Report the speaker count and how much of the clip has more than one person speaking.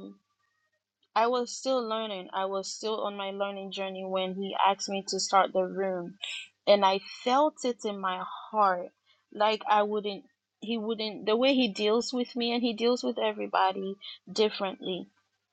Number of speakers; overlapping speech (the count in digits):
1, no overlap